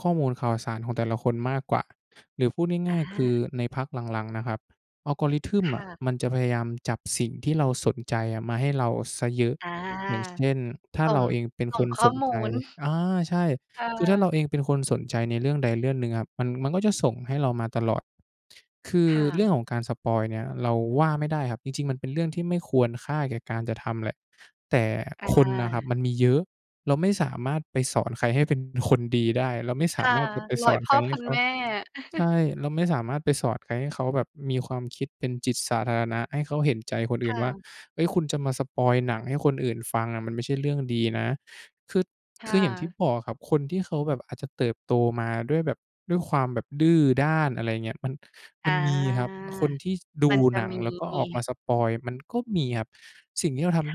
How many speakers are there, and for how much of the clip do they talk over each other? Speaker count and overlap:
2, about 9%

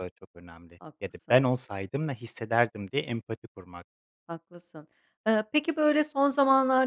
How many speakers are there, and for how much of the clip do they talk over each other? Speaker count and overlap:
2, about 3%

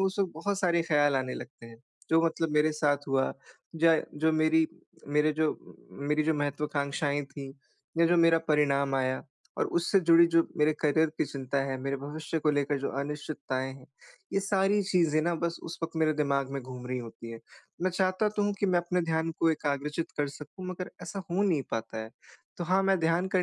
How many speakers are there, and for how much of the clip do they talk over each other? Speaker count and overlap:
1, no overlap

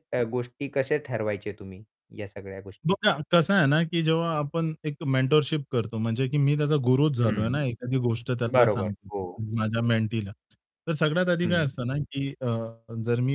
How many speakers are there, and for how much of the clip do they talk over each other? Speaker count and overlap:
2, about 9%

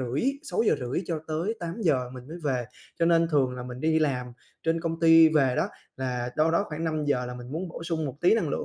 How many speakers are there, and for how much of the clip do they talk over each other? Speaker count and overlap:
1, no overlap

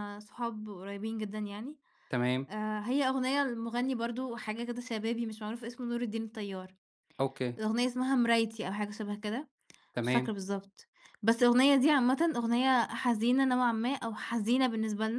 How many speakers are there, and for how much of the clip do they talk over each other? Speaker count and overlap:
2, about 2%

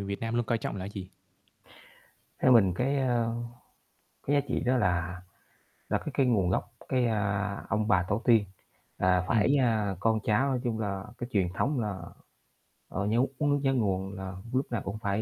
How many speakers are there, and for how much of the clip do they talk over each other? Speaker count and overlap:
2, about 1%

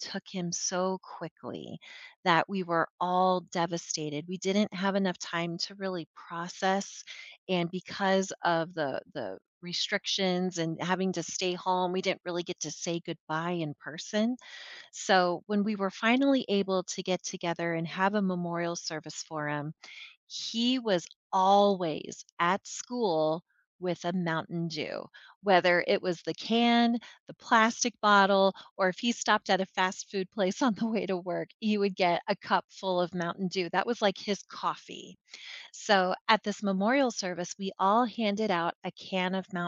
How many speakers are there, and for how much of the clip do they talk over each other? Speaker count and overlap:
1, no overlap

